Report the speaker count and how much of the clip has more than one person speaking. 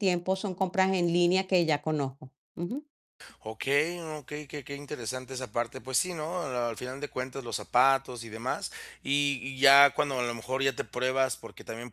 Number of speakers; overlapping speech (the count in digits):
2, no overlap